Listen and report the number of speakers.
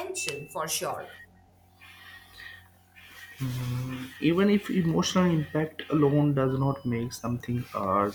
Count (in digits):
2